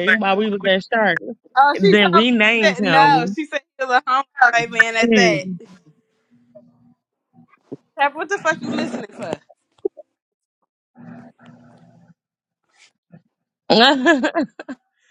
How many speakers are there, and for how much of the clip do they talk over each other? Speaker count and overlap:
2, about 11%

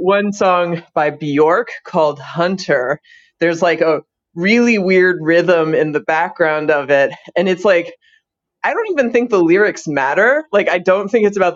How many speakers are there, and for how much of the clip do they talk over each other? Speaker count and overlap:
1, no overlap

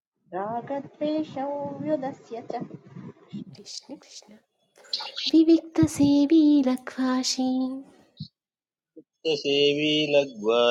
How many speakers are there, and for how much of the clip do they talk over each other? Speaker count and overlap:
3, no overlap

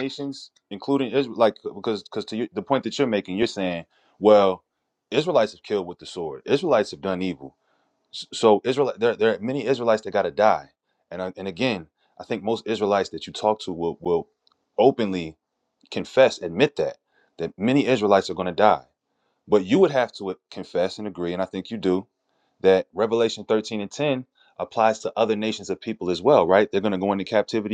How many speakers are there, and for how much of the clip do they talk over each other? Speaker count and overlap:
1, no overlap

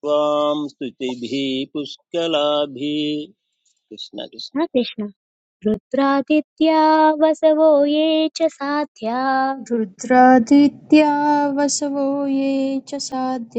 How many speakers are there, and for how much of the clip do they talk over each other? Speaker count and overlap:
3, no overlap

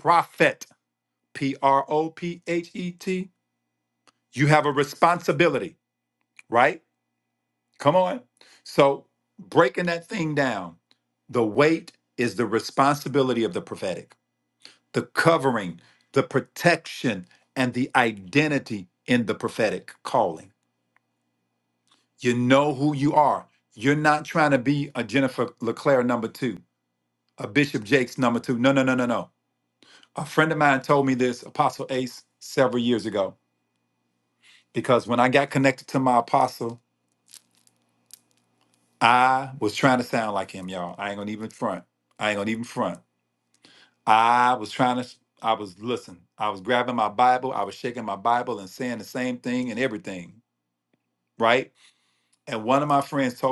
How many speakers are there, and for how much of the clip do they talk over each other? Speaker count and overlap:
1, no overlap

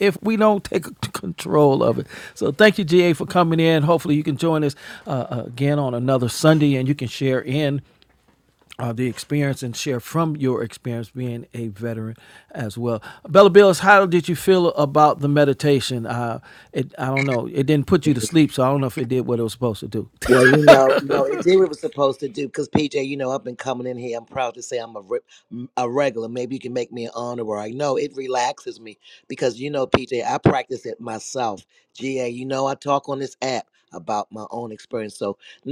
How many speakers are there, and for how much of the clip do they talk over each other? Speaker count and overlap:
2, no overlap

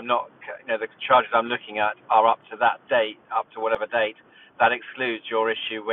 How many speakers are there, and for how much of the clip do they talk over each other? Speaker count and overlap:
1, no overlap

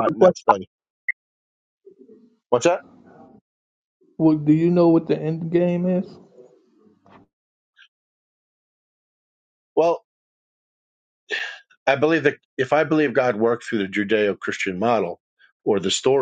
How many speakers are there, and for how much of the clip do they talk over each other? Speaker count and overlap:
2, about 1%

